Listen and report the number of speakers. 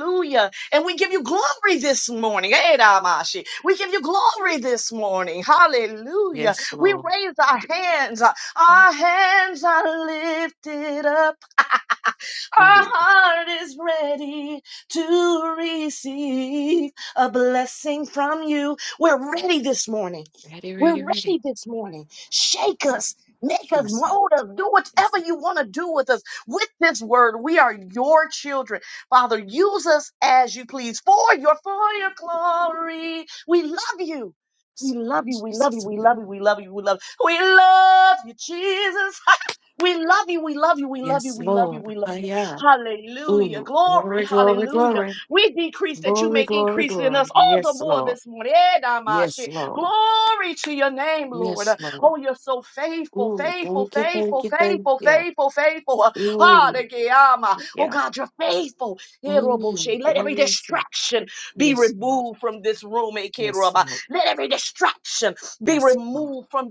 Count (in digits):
2